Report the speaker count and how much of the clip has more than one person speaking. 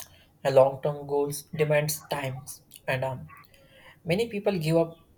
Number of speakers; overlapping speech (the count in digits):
1, no overlap